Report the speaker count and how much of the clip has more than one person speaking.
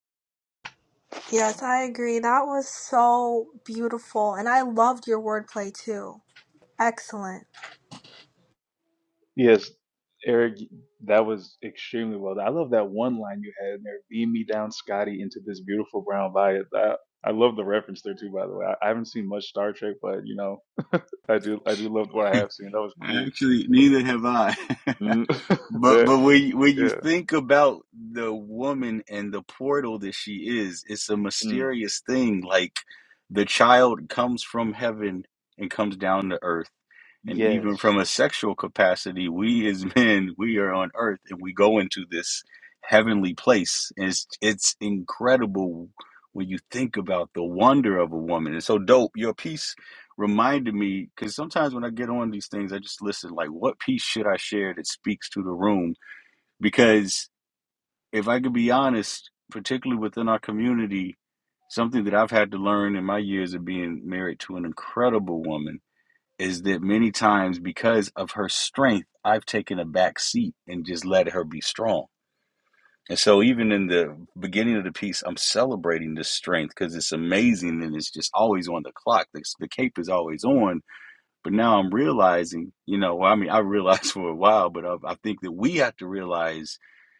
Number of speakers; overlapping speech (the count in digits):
3, about 2%